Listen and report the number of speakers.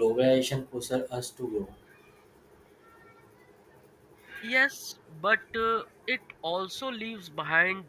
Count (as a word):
two